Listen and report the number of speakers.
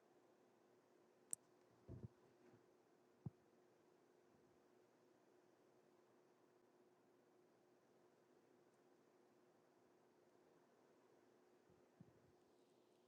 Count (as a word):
zero